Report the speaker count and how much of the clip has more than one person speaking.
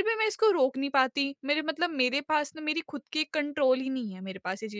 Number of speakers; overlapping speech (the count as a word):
one, no overlap